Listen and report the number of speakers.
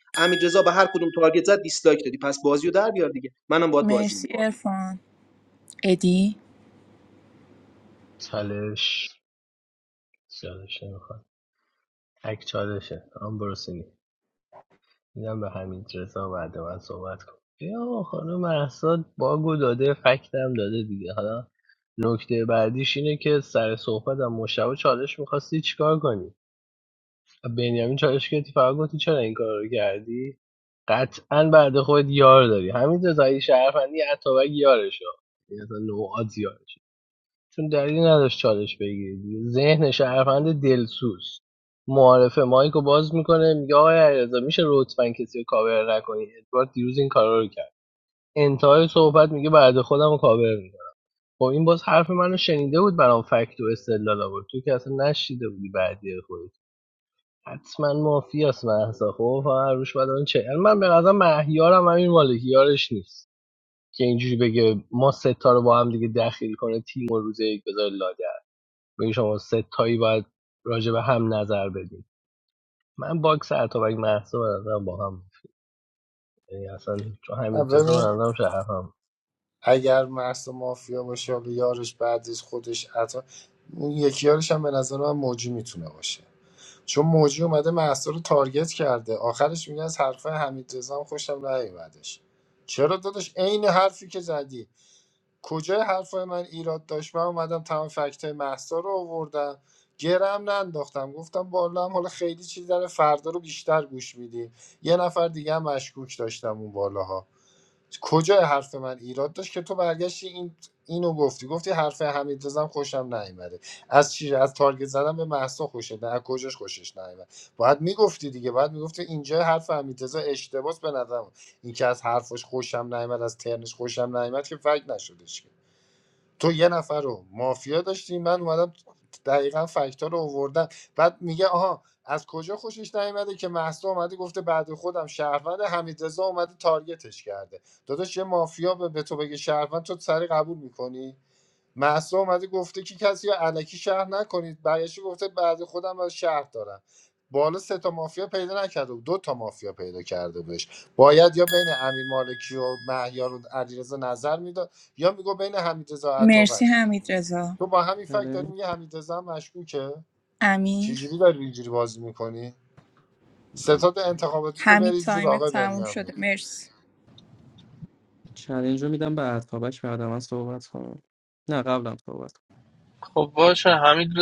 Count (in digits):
6